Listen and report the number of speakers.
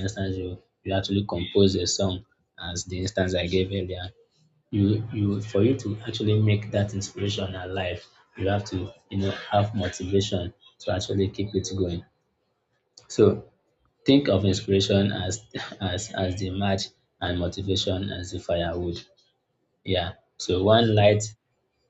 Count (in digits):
1